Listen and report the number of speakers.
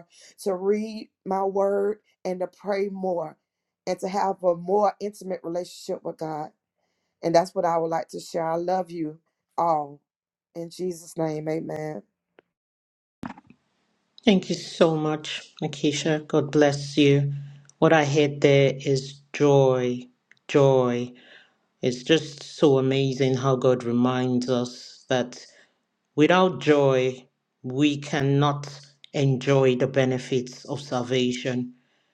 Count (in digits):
2